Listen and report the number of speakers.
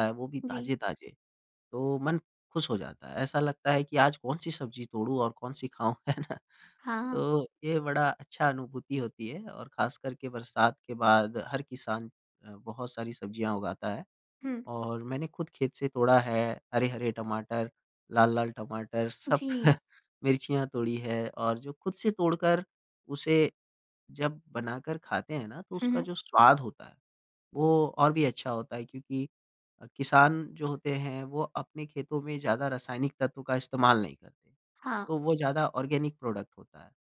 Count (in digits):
2